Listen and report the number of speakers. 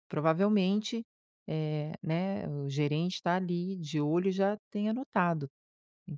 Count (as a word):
one